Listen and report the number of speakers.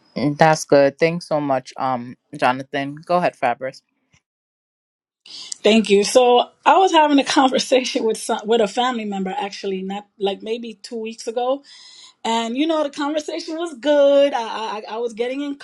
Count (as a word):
two